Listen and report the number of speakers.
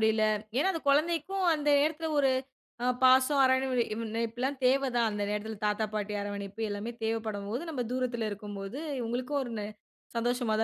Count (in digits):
1